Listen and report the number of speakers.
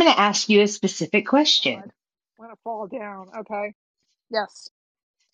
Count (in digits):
2